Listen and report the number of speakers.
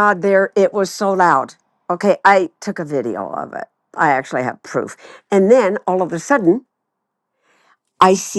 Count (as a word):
one